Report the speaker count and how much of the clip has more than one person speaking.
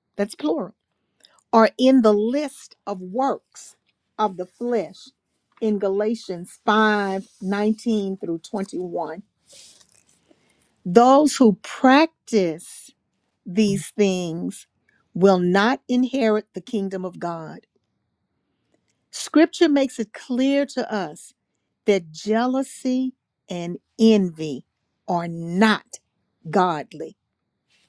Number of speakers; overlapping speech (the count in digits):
1, no overlap